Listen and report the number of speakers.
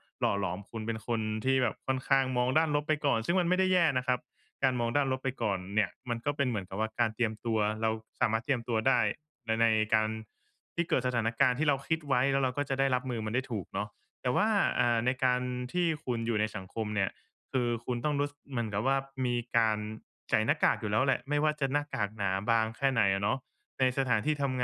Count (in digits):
1